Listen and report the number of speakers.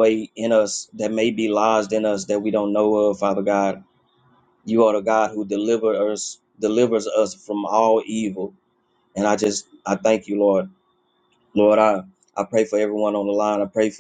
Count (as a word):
one